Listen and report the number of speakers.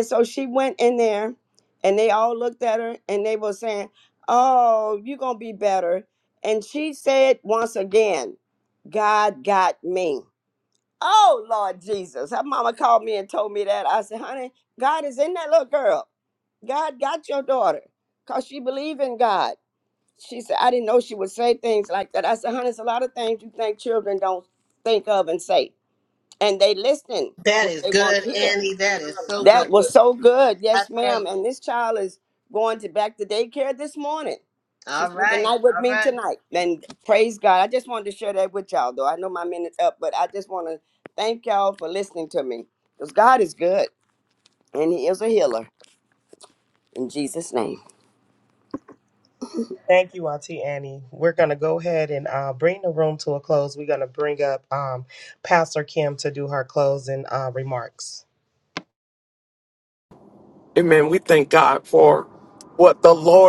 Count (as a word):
four